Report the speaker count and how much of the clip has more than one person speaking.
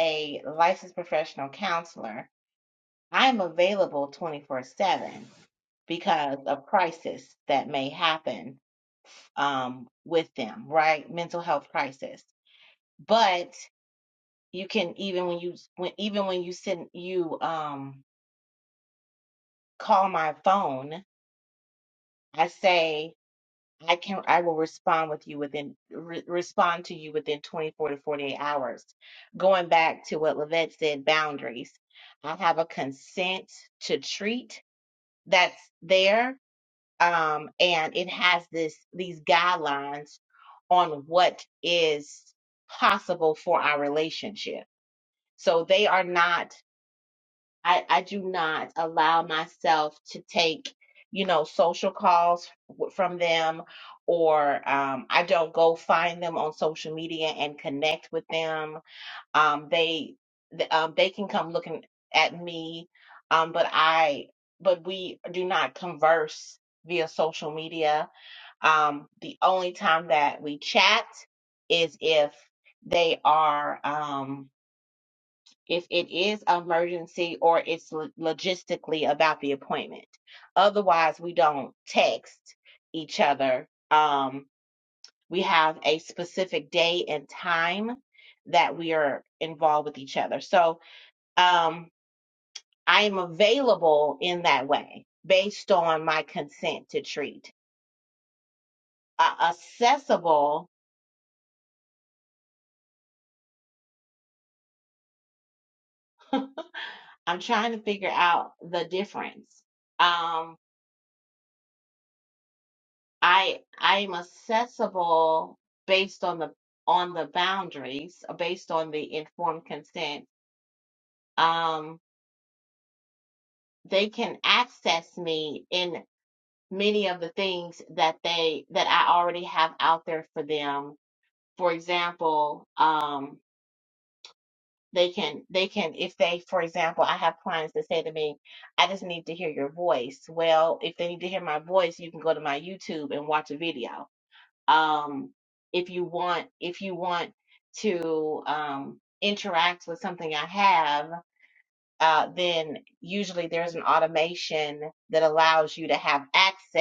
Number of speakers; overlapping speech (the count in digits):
1, no overlap